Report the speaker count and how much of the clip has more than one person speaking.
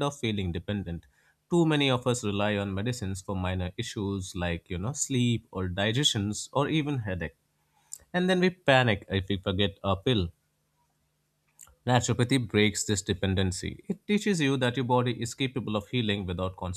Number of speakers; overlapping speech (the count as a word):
one, no overlap